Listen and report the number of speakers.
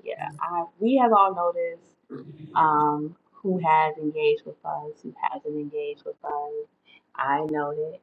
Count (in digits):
1